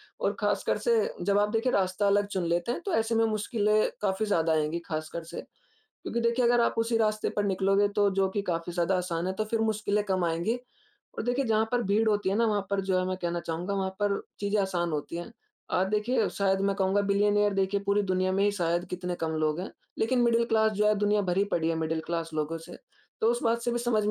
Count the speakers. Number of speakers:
1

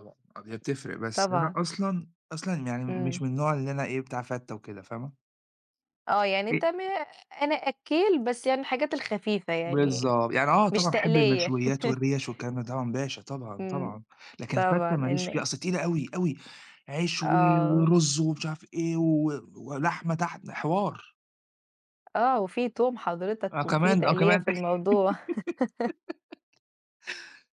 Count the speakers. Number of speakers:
2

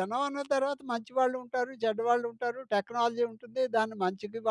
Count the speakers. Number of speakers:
1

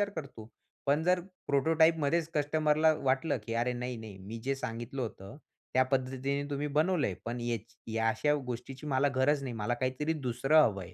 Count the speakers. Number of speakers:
1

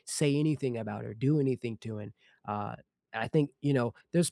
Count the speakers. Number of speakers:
1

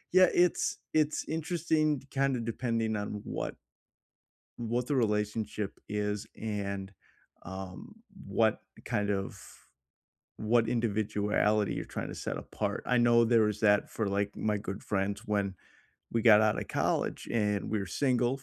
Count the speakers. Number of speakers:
1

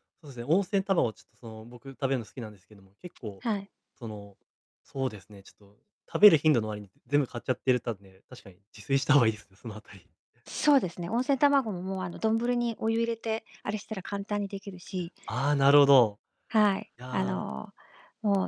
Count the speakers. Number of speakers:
2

